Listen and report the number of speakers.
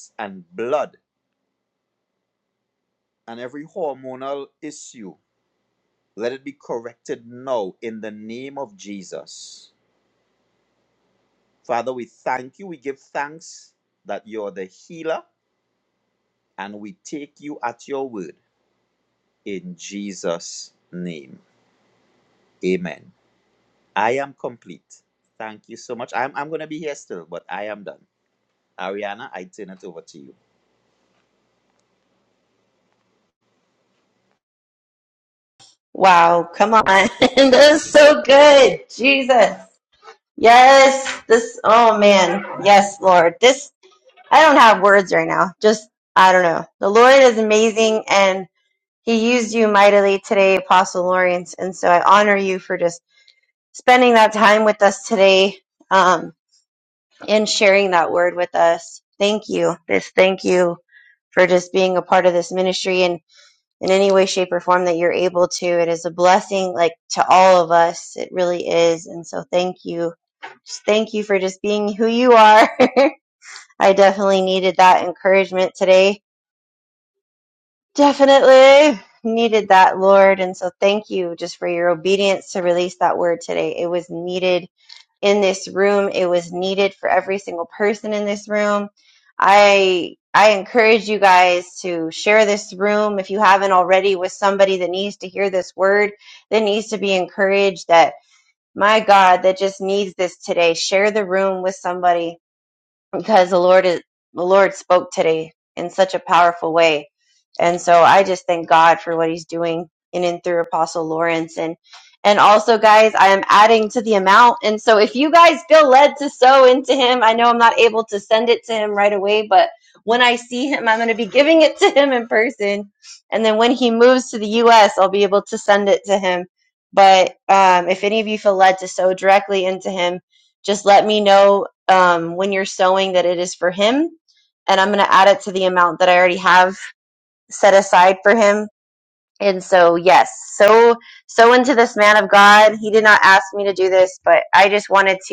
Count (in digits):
2